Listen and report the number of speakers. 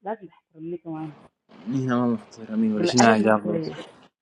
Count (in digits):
2